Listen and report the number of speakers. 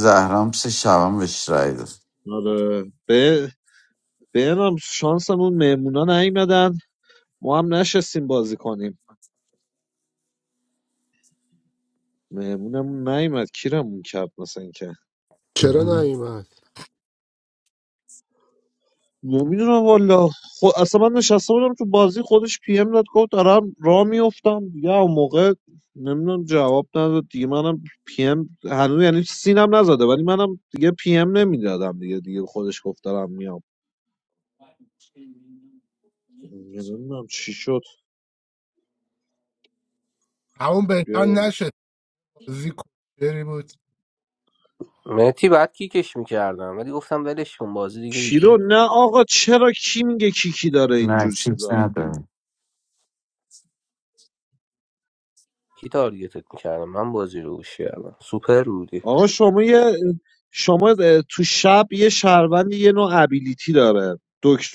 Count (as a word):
four